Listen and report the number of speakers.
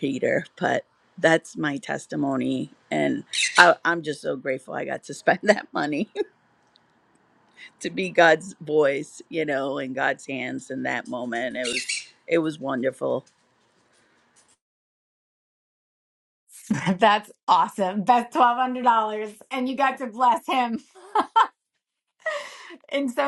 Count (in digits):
2